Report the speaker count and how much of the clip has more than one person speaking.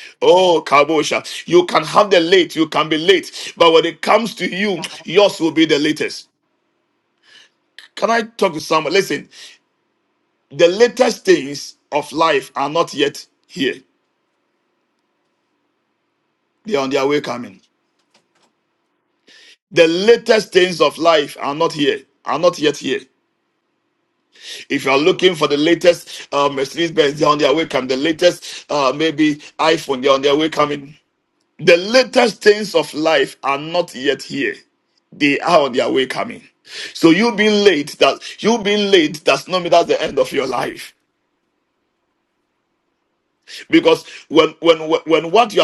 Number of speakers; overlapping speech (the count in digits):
1, no overlap